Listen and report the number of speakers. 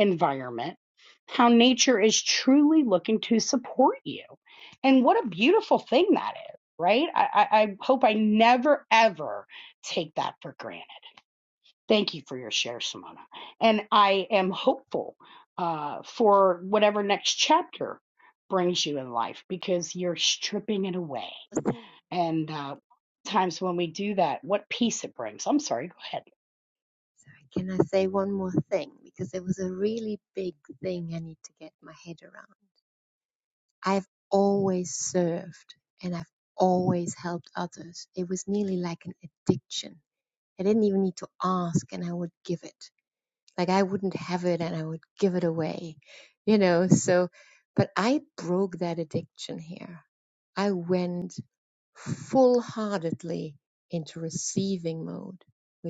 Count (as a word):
two